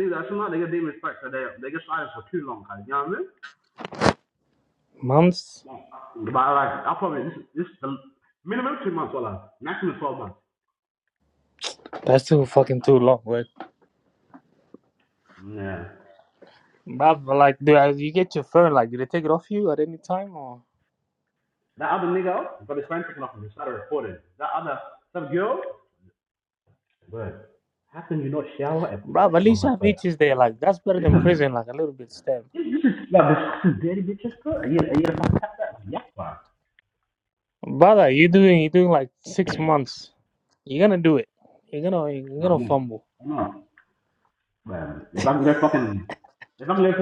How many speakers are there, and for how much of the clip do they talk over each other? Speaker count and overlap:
2, about 4%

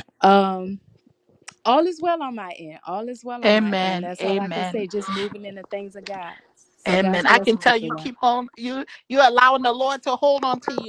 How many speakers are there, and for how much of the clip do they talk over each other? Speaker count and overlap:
2, about 24%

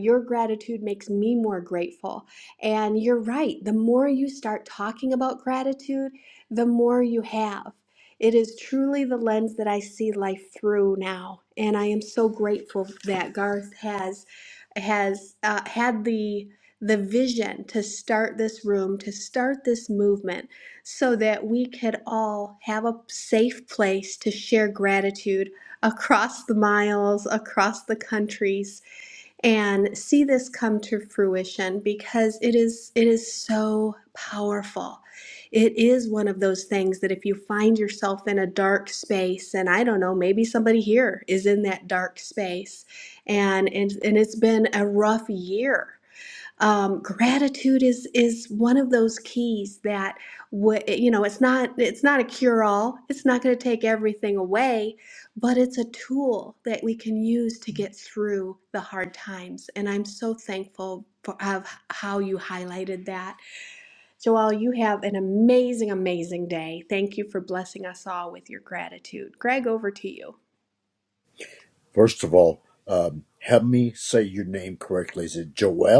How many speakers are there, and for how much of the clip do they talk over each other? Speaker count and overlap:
2, no overlap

